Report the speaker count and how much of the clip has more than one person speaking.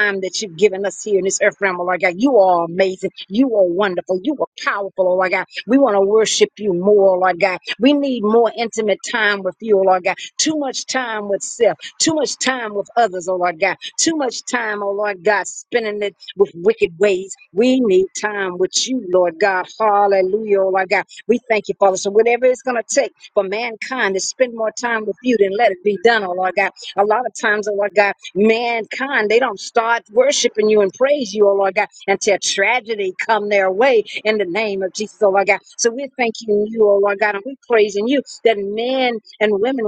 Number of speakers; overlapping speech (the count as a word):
one, no overlap